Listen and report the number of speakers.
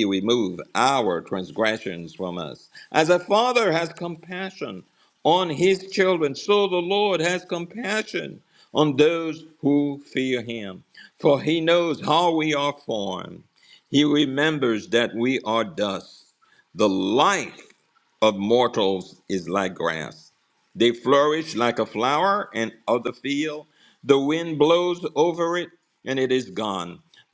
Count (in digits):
1